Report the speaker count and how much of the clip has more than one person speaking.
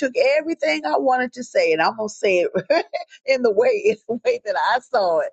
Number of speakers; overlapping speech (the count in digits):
1, no overlap